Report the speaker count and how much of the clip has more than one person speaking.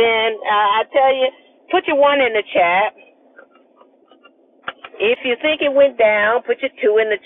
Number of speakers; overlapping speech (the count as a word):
one, no overlap